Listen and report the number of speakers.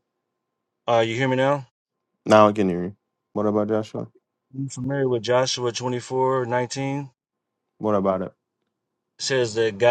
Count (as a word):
two